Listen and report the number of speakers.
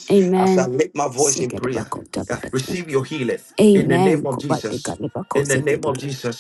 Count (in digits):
2